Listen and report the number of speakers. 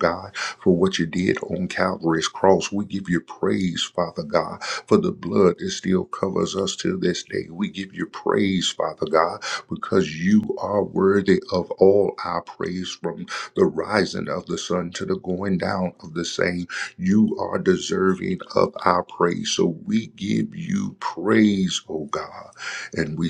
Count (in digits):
1